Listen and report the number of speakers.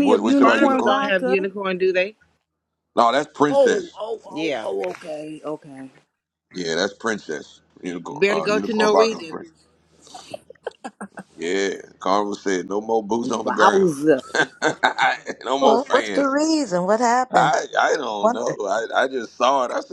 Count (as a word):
four